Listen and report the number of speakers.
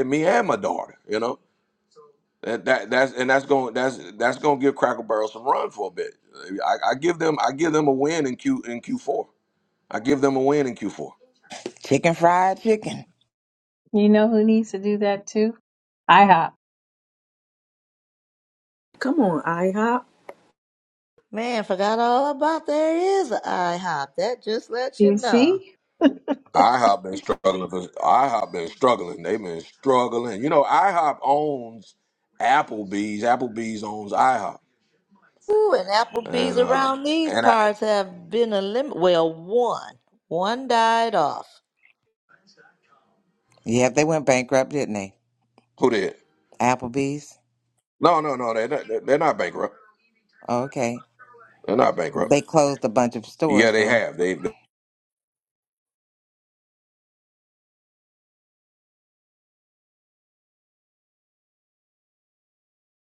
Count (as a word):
five